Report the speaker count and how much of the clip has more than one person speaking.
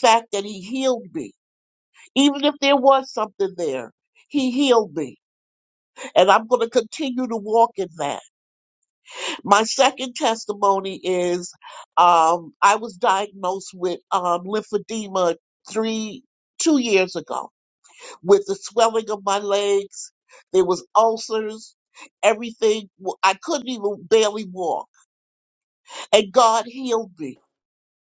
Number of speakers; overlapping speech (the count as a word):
one, no overlap